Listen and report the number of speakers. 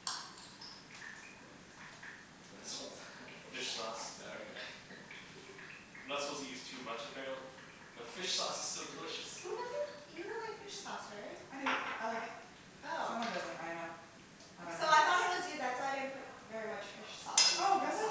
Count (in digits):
4